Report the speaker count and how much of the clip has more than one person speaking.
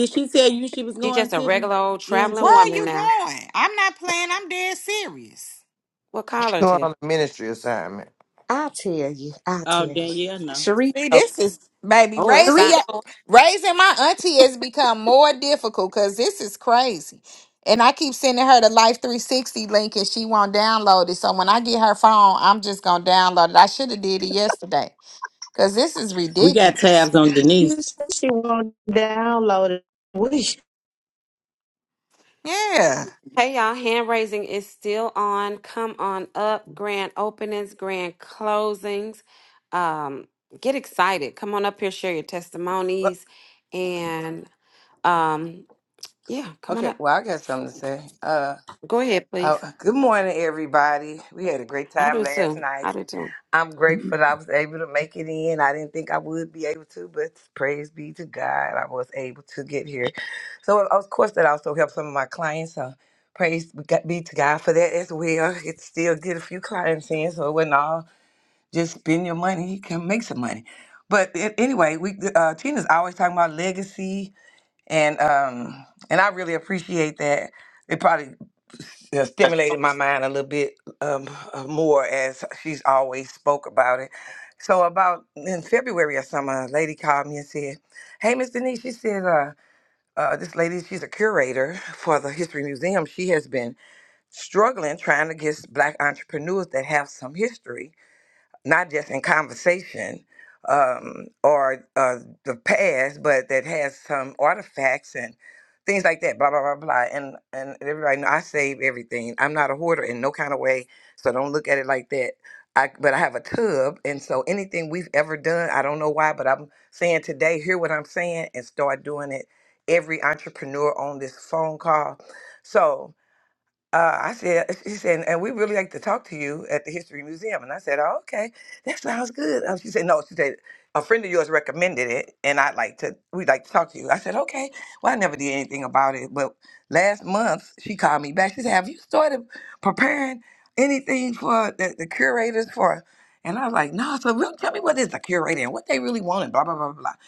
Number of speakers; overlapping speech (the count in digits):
7, about 4%